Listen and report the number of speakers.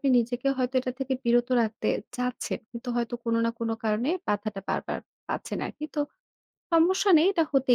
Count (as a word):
one